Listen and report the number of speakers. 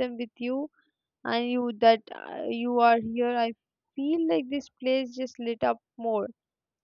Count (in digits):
1